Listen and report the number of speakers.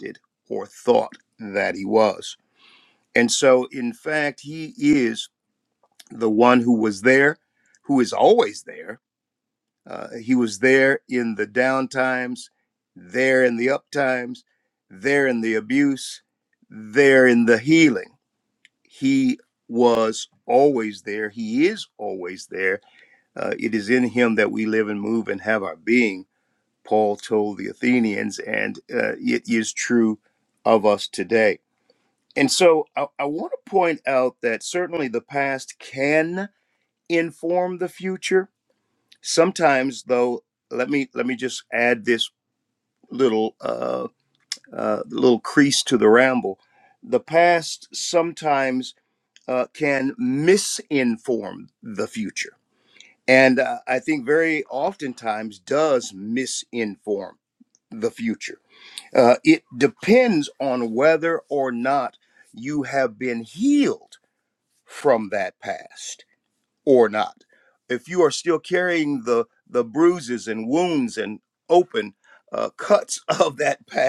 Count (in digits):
1